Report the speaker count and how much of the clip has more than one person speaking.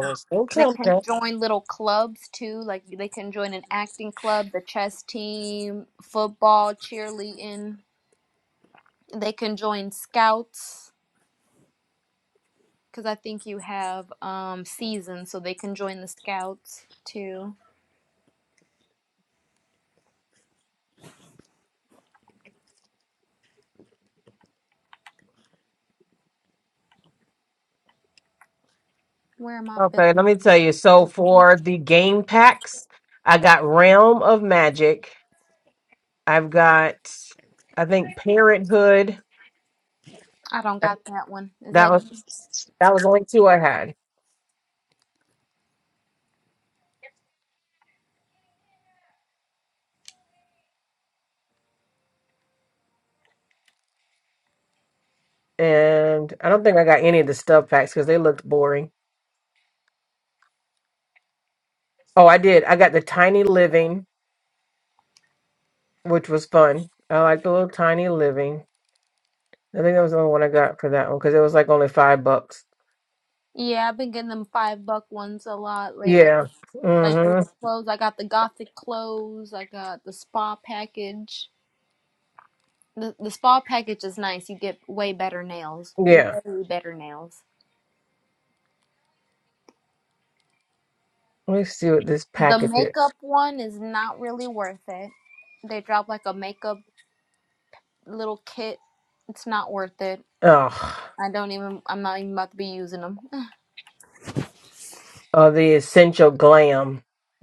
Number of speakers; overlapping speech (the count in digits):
2, about 2%